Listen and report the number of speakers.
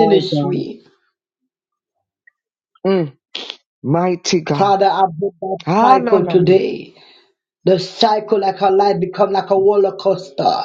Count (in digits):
2